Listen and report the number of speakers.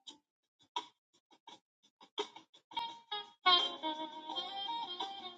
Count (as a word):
zero